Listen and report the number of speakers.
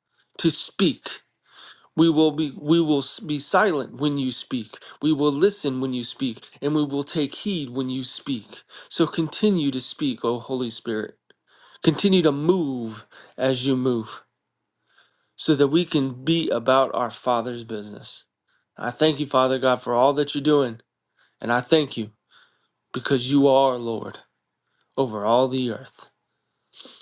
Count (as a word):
one